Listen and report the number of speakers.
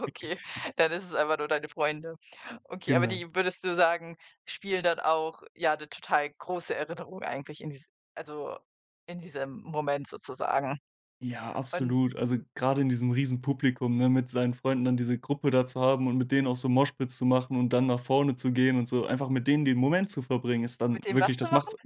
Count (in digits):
2